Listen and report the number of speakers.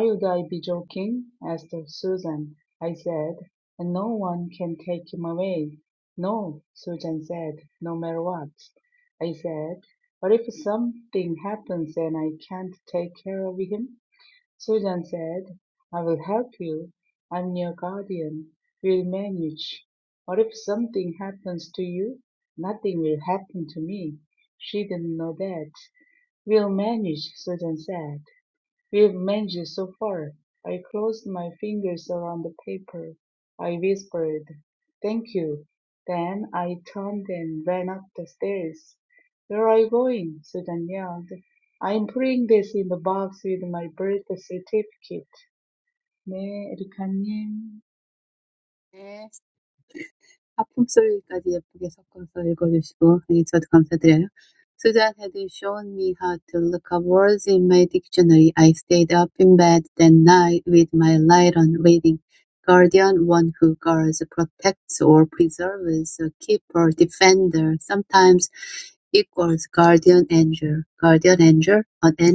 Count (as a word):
two